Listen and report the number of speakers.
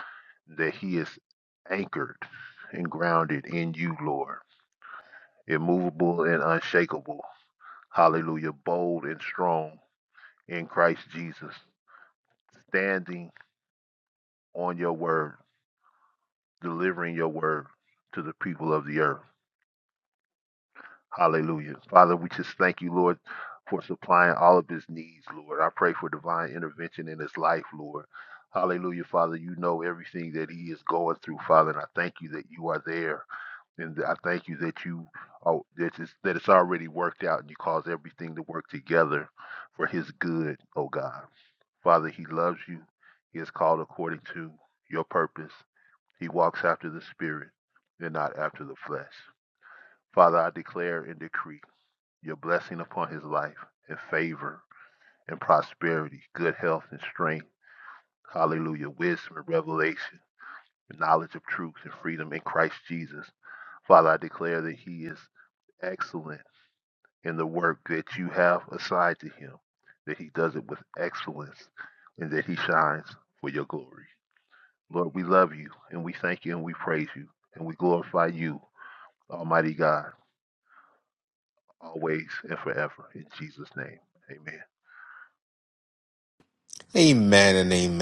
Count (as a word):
two